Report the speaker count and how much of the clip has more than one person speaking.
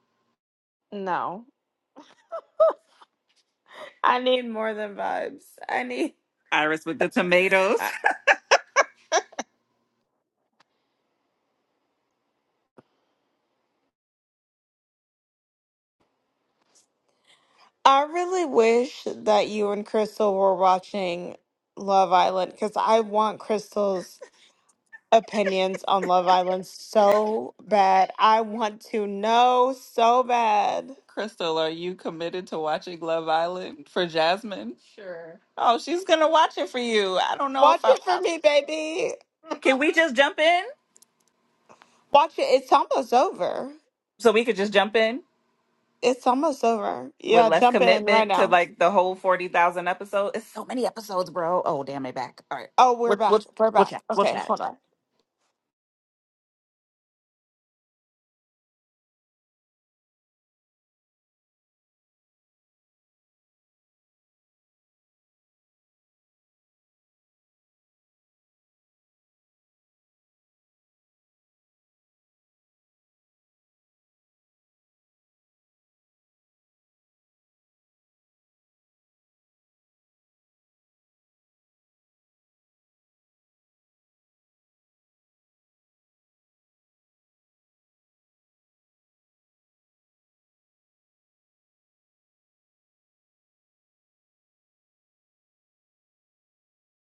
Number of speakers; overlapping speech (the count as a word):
two, about 3%